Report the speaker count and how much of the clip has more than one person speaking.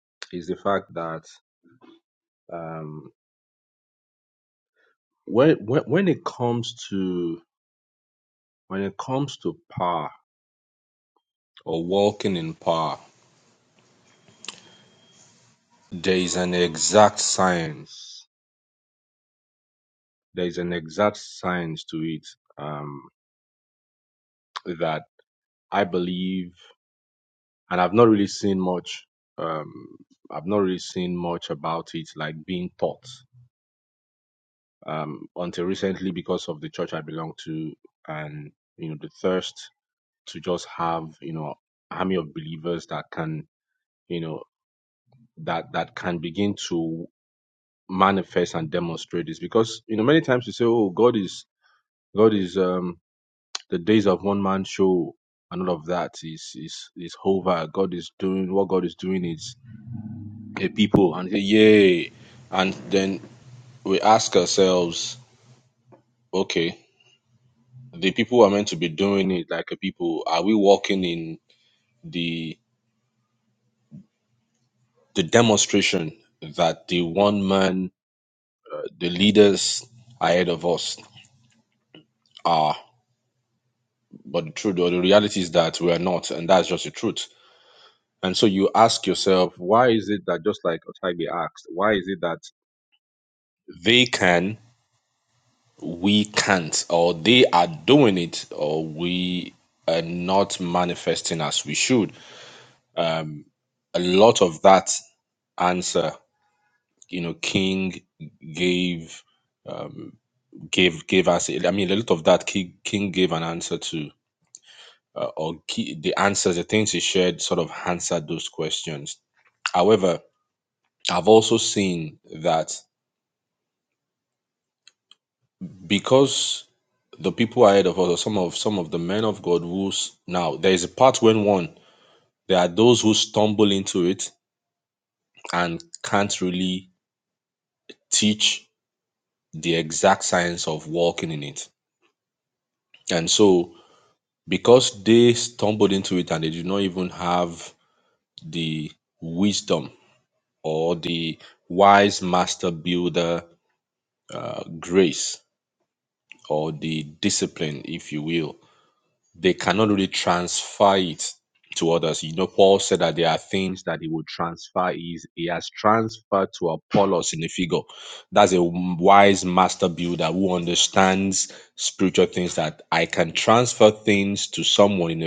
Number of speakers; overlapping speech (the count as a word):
one, no overlap